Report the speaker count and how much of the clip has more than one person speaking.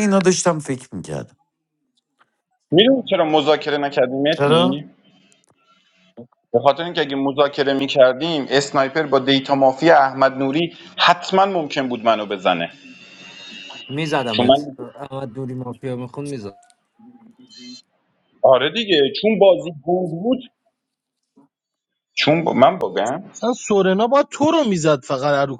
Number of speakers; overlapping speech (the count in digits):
4, about 2%